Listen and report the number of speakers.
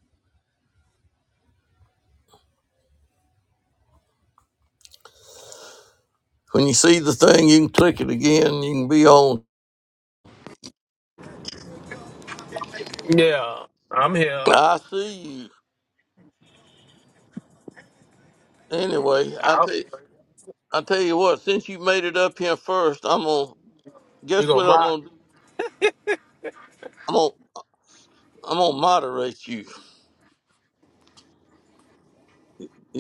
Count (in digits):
2